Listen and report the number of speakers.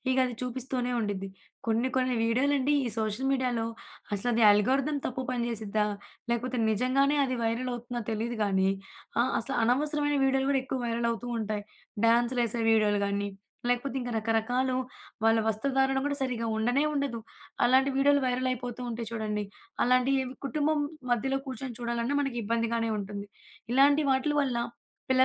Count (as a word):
one